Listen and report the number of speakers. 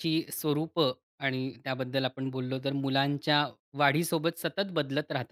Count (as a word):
one